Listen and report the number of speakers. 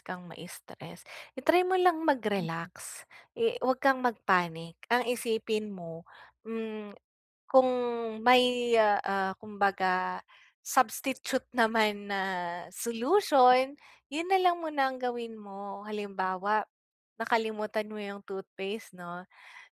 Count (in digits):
1